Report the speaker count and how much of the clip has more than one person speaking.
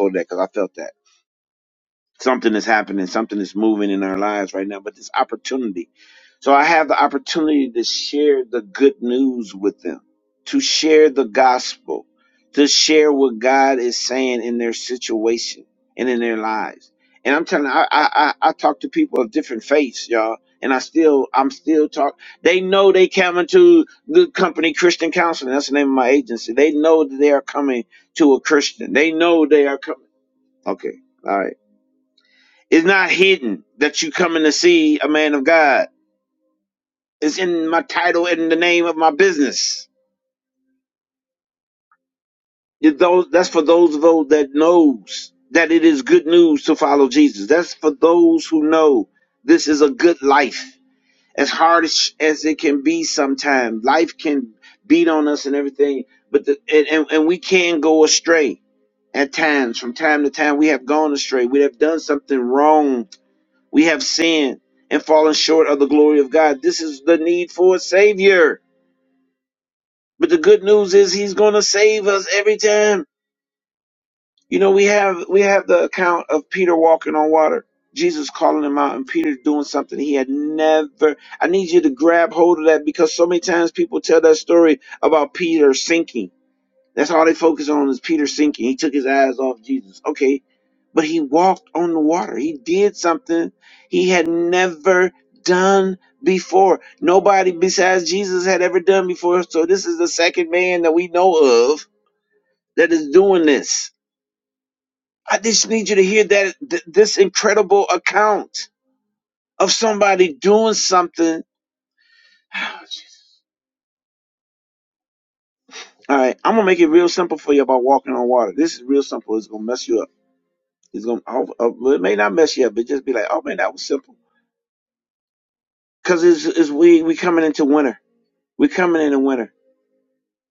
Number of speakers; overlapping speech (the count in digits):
1, no overlap